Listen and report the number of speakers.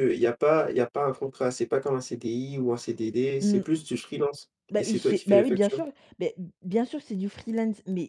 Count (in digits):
2